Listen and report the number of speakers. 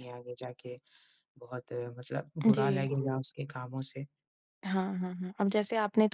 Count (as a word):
two